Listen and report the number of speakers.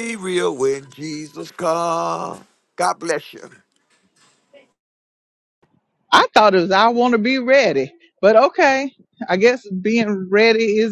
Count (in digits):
2